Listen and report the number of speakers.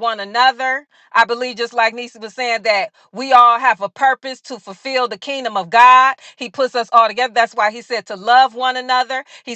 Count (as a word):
one